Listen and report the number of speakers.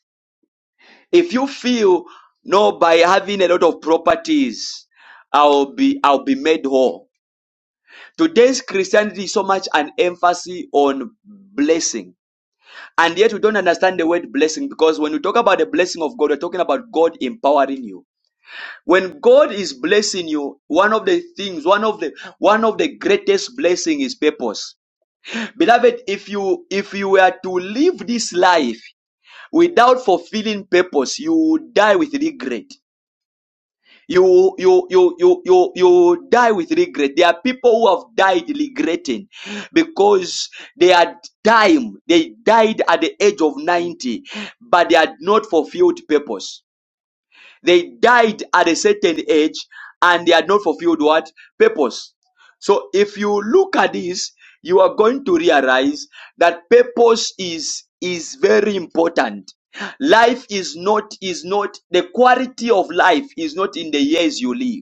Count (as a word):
one